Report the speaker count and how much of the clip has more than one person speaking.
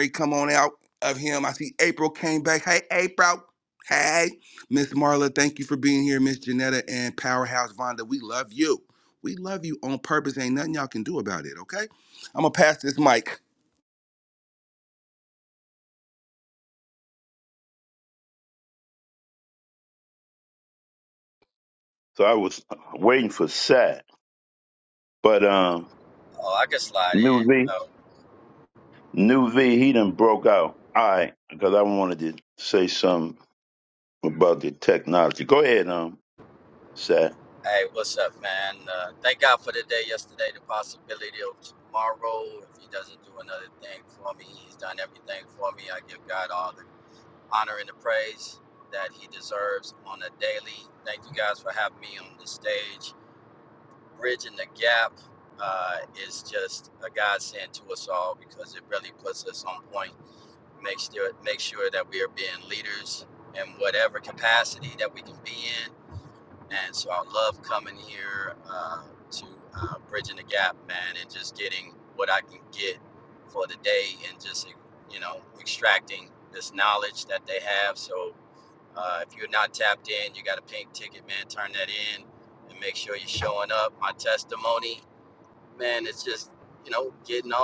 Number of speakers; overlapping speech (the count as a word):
three, about 1%